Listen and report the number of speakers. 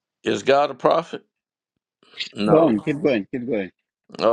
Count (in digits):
2